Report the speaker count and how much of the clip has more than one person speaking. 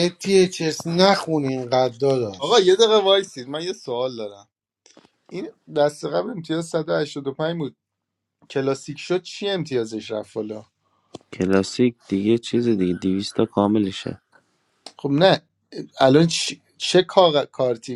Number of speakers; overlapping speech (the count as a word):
three, about 2%